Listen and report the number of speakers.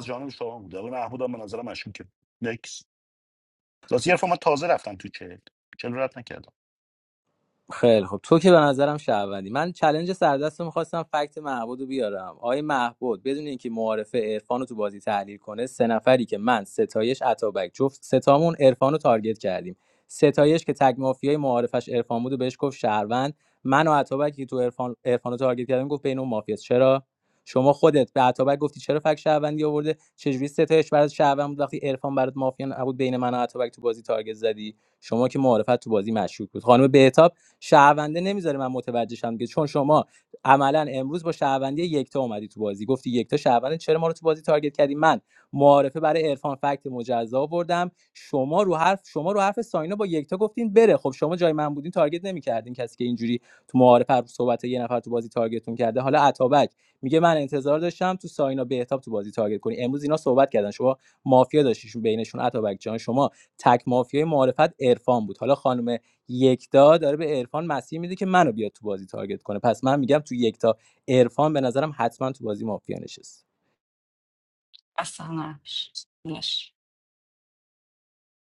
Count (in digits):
3